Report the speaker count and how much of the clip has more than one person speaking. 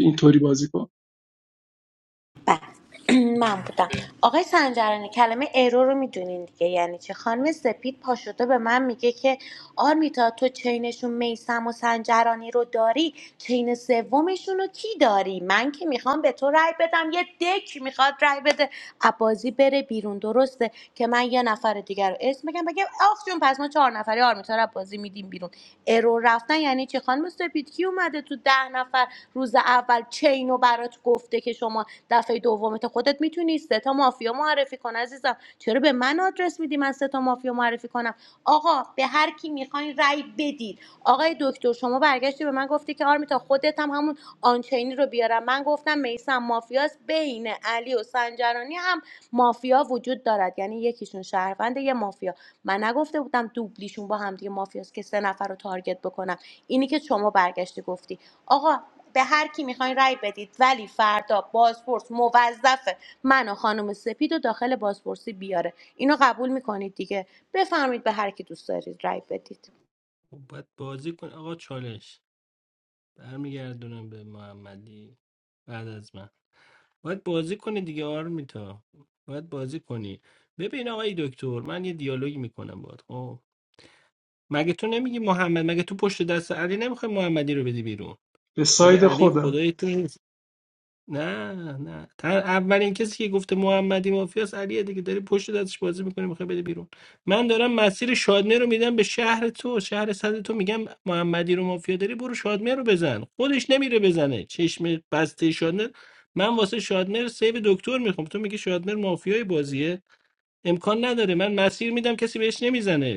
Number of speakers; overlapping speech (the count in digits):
3, about 1%